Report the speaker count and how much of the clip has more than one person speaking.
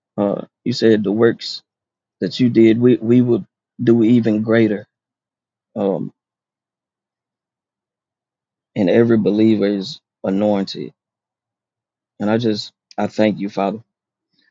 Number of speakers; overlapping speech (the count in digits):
1, no overlap